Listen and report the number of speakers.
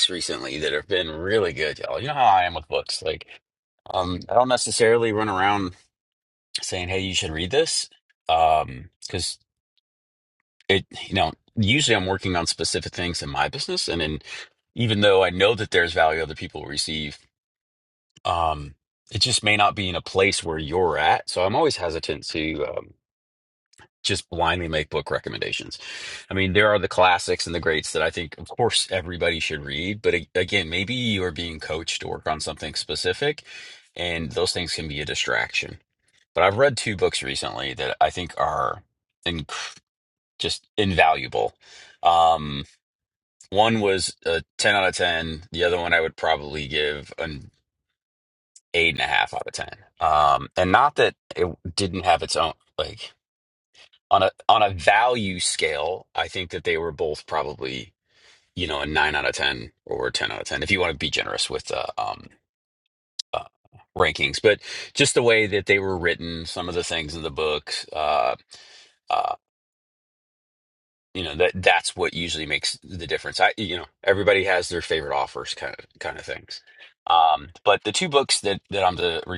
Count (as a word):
one